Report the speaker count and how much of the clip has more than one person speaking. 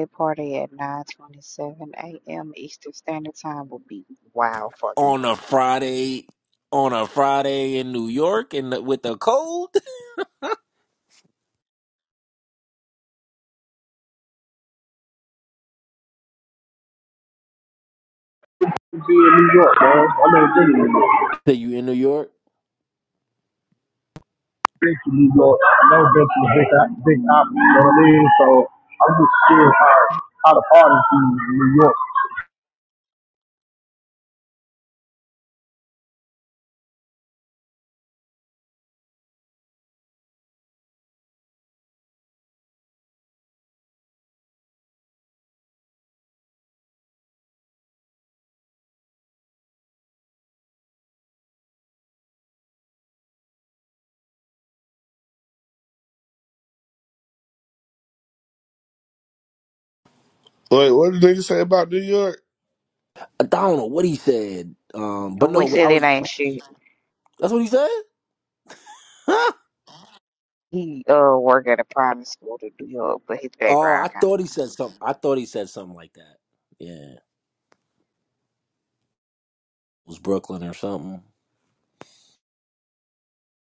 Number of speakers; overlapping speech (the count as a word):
four, about 2%